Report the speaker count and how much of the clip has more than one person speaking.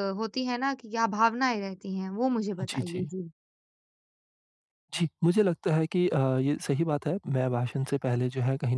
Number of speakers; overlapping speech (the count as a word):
two, about 4%